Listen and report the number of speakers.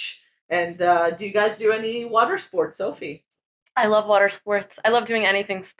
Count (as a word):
two